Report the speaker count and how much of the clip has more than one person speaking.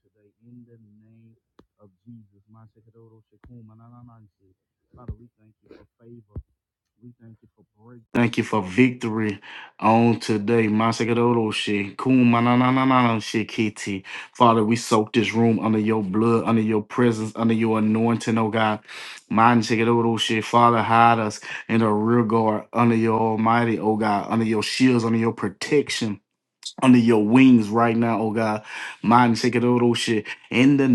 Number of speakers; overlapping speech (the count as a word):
one, no overlap